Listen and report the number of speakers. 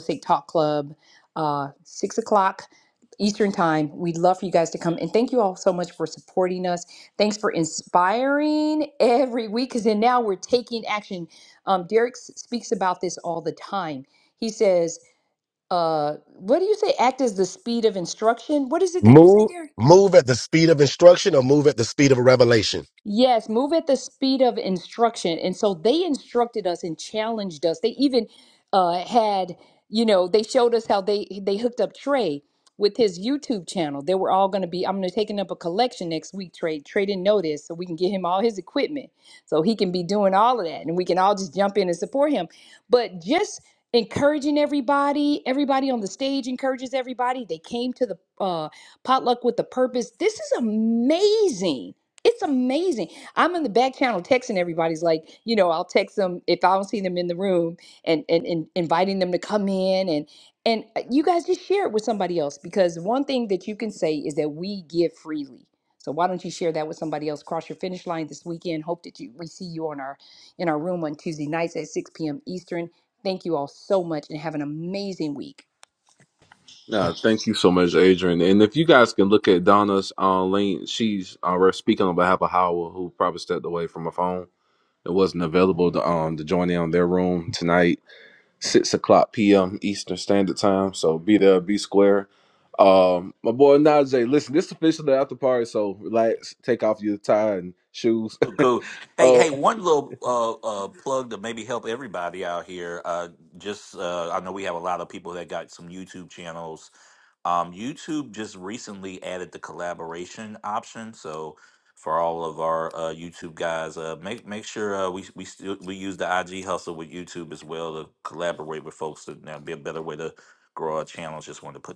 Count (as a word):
four